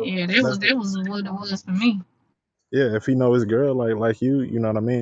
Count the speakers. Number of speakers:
2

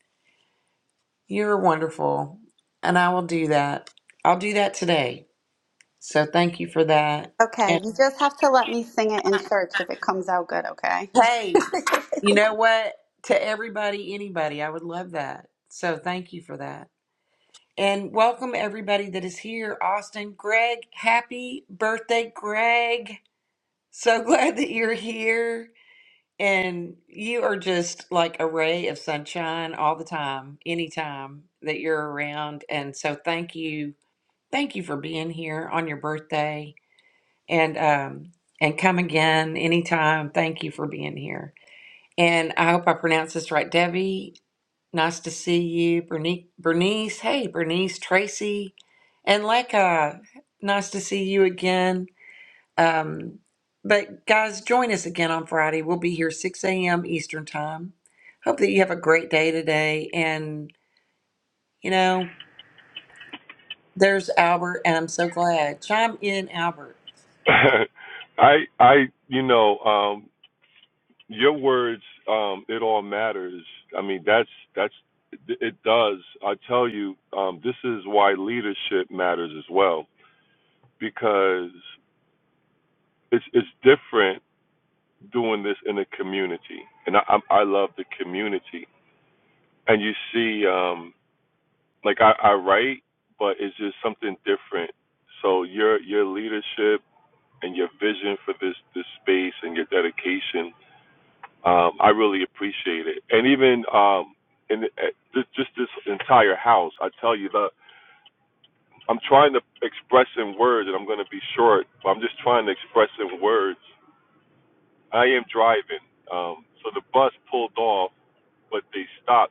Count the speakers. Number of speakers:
3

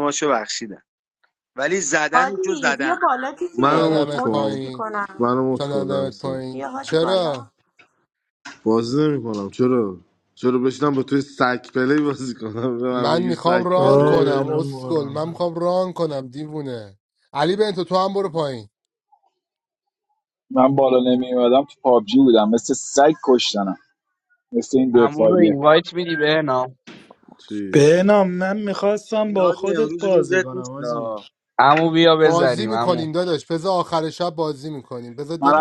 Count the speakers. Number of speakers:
7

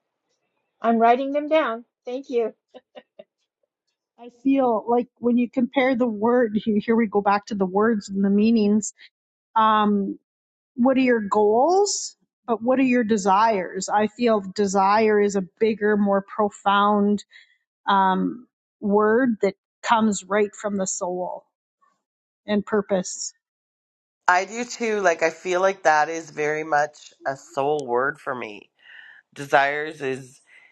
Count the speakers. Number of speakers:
3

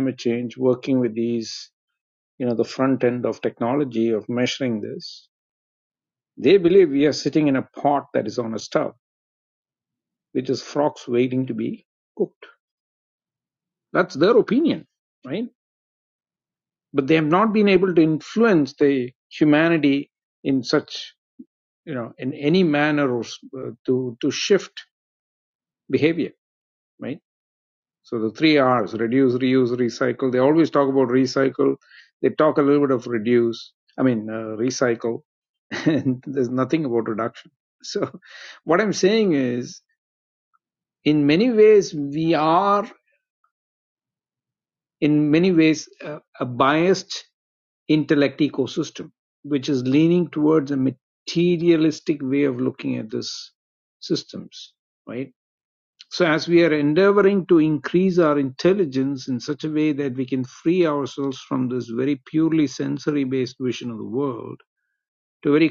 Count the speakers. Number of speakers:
1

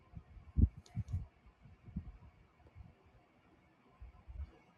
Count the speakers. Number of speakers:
0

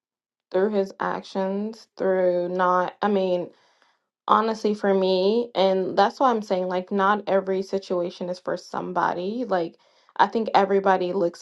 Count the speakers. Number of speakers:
1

